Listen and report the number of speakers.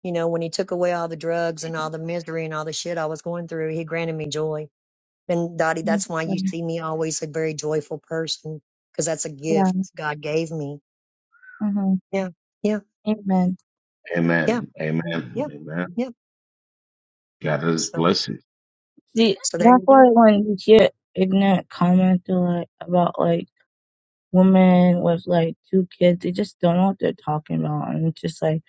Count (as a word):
three